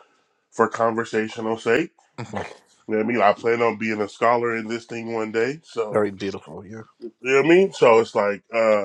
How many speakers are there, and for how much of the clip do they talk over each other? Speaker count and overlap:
two, about 2%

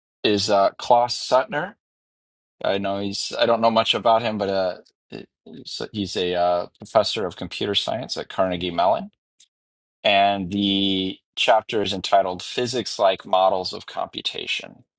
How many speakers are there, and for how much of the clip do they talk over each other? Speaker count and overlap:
one, no overlap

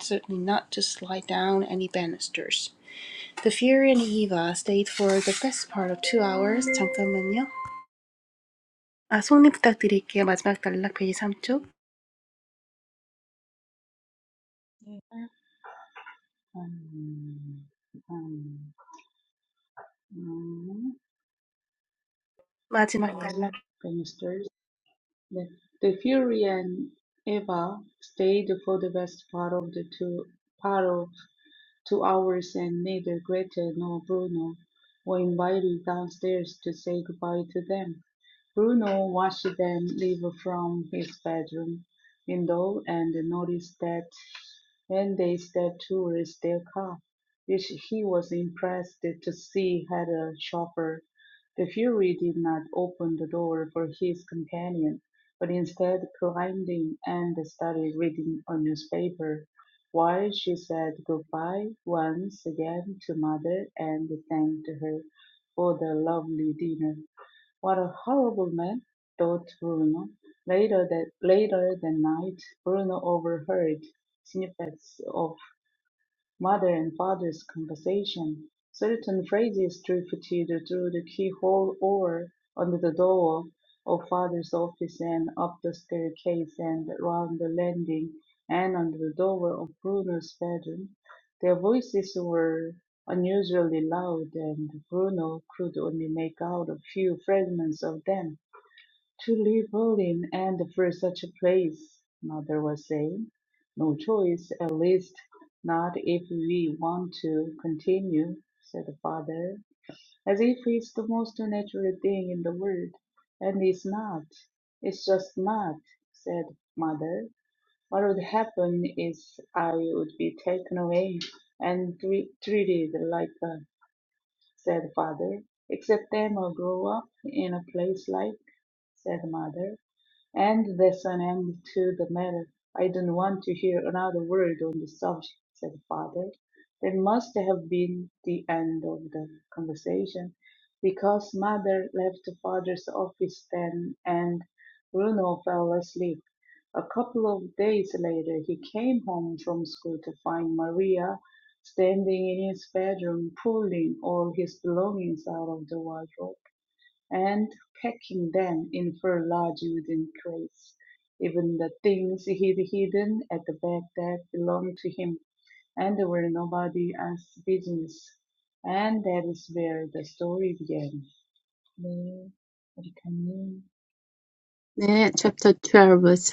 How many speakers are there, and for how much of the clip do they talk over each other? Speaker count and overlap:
three, under 1%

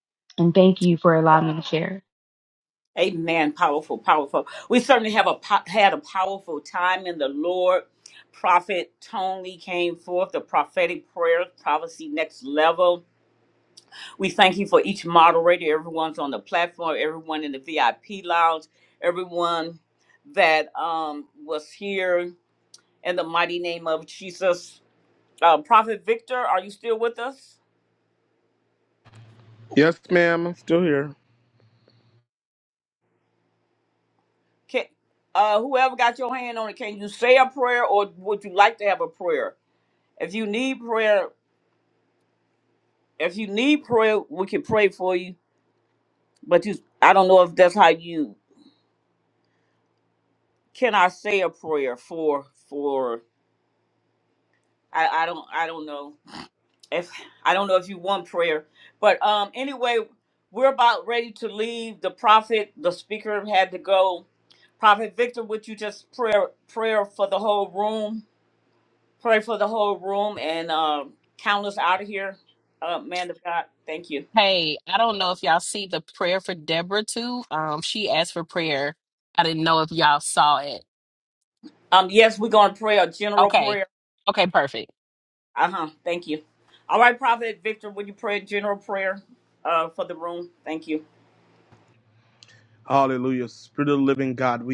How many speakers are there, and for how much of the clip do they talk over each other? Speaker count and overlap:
four, under 1%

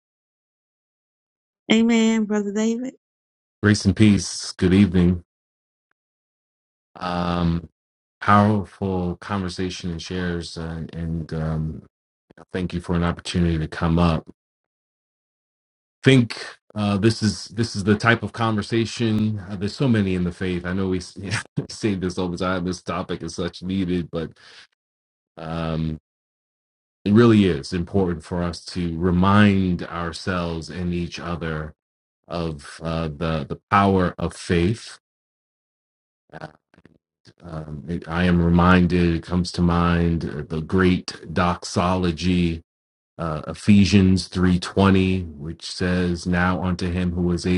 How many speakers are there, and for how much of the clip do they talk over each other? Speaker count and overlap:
two, no overlap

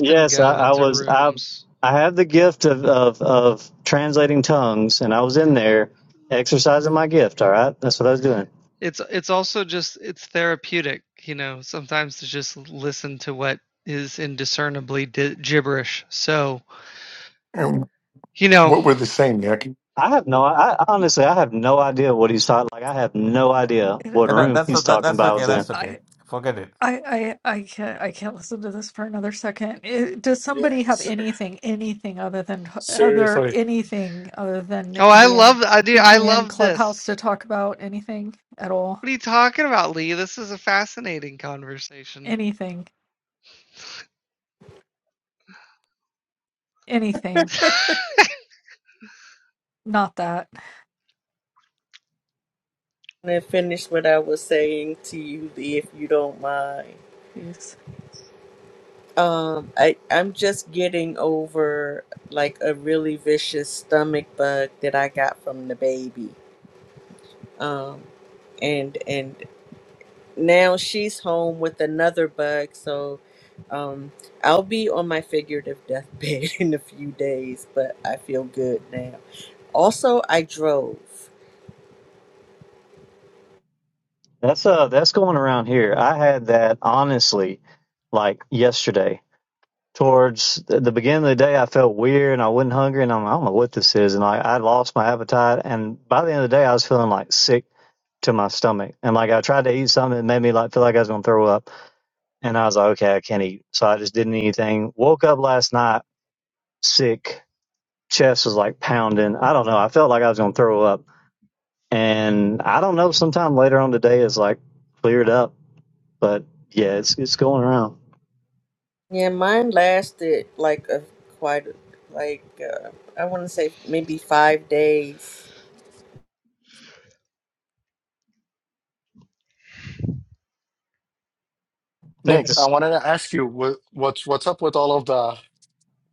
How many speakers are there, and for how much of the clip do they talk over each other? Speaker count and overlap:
seven, about 5%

